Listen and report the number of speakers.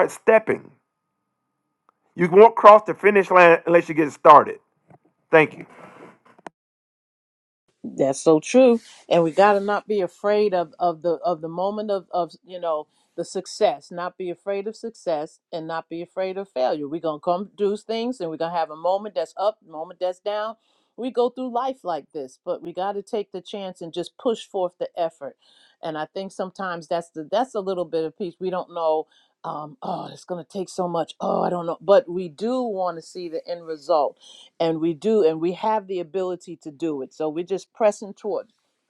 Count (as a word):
two